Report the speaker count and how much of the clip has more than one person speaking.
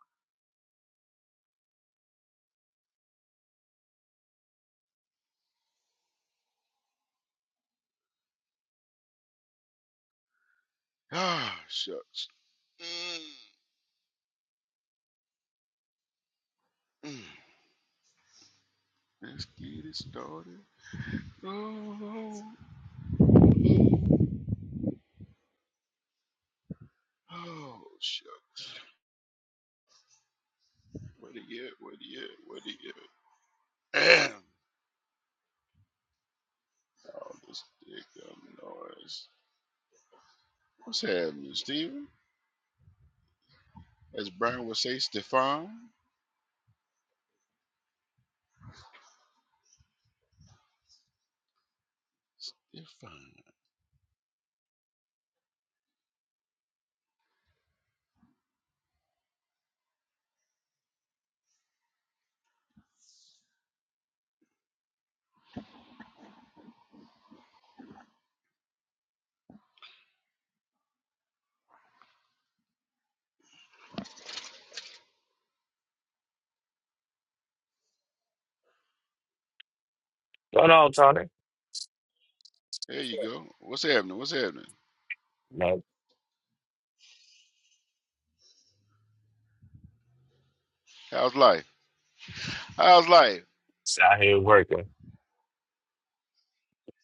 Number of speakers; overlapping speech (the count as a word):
two, no overlap